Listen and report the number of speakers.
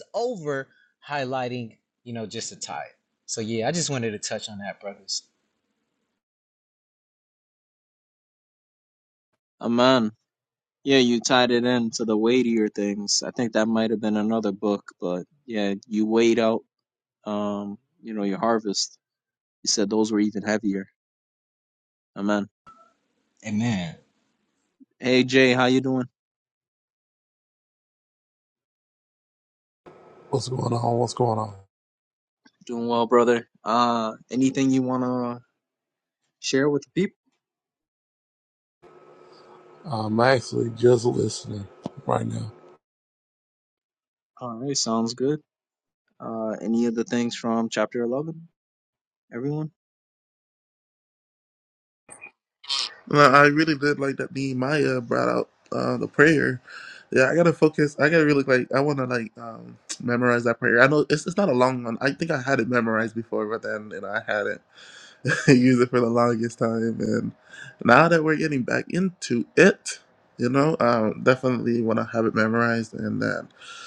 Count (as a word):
four